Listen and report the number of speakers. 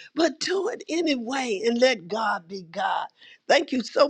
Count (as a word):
one